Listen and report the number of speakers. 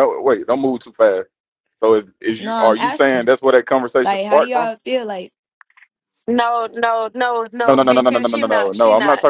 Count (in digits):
3